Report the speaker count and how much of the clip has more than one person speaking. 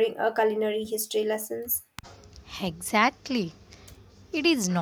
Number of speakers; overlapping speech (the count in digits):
2, no overlap